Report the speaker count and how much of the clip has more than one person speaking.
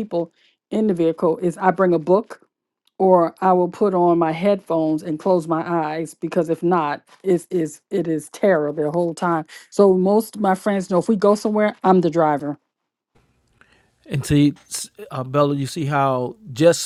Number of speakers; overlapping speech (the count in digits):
2, no overlap